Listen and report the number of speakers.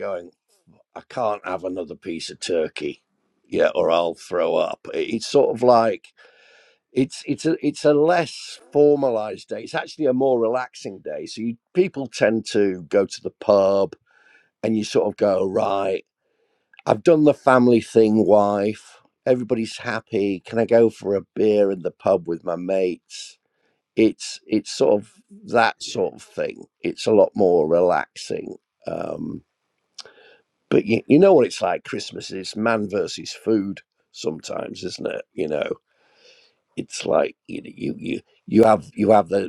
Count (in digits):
1